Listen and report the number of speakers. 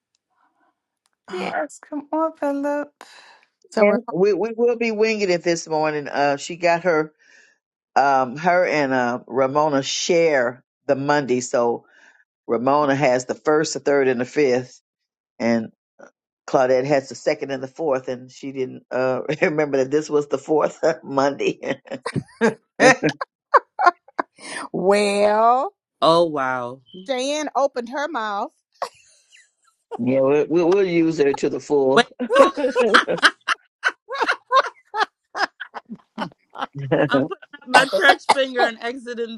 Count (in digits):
4